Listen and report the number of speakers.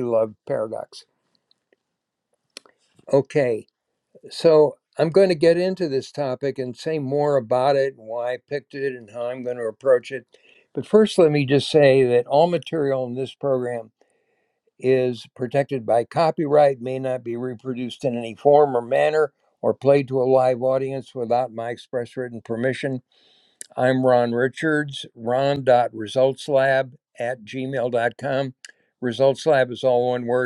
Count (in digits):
1